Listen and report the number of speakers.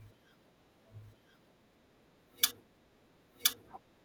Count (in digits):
0